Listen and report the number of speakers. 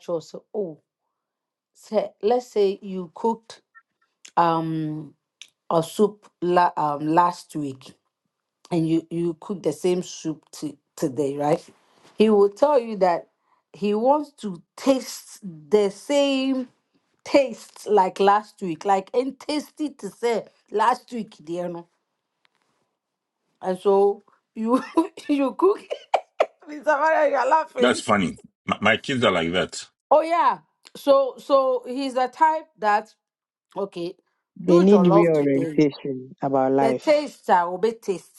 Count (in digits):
3